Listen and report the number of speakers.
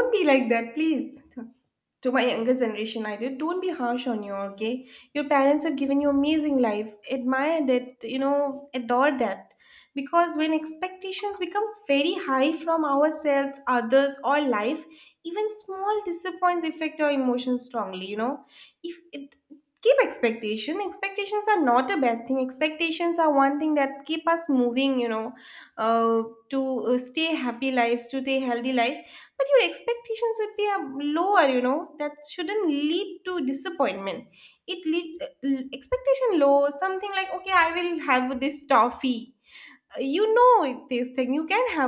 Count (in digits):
1